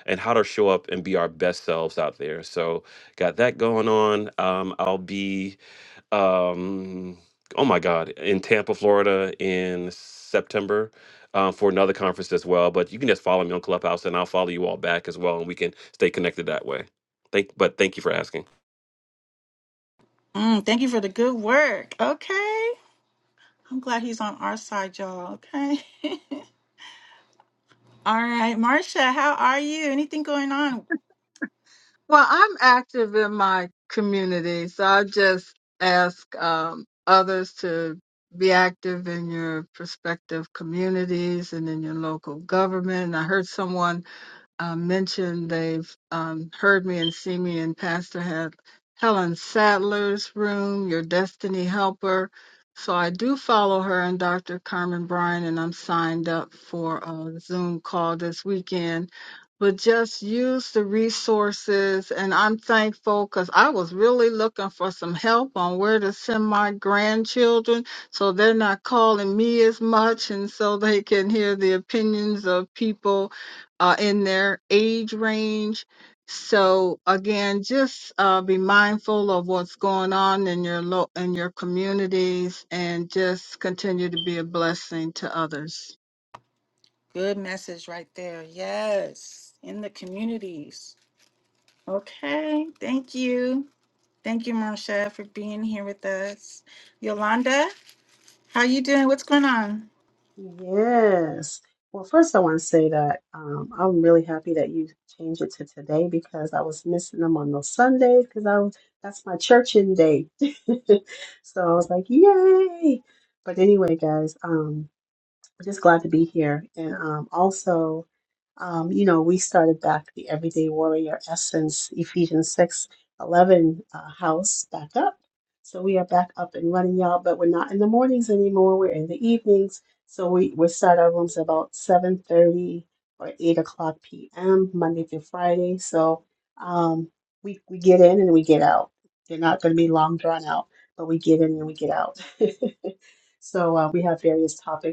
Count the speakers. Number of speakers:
four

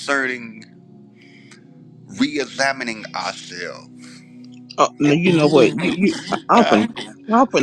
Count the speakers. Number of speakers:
two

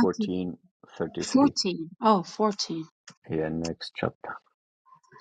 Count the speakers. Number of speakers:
two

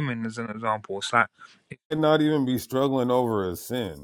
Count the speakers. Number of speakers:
two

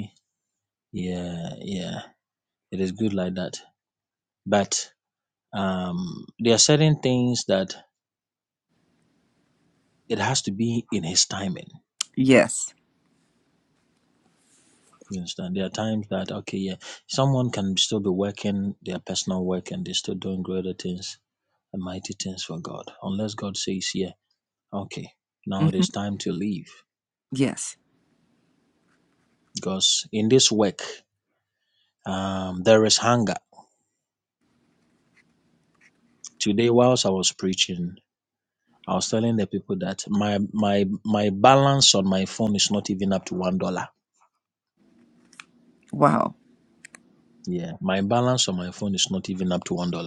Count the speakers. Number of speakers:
two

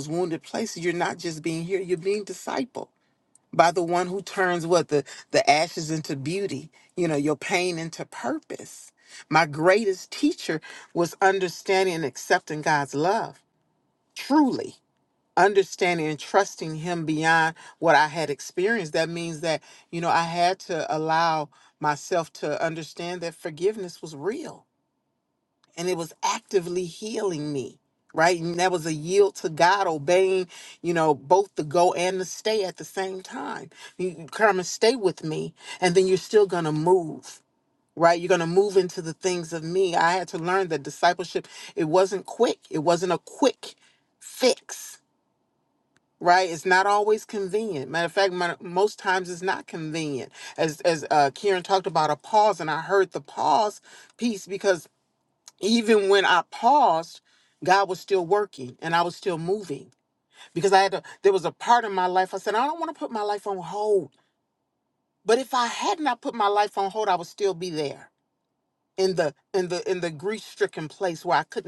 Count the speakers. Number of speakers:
one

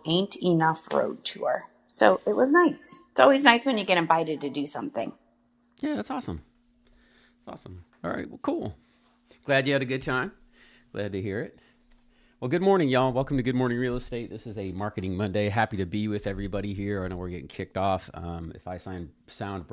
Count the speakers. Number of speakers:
two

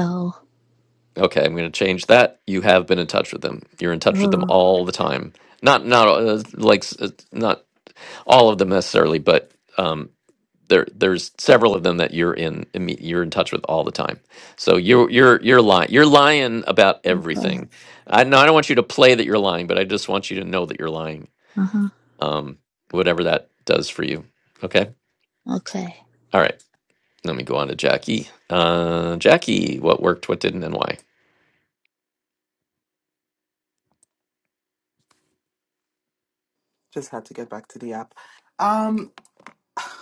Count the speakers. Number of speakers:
three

